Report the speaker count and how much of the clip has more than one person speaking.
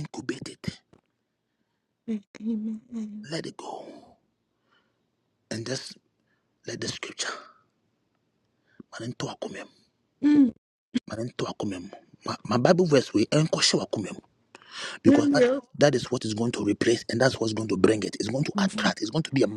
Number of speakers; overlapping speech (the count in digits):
2, about 3%